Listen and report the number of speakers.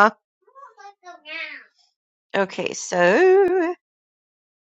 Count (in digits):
1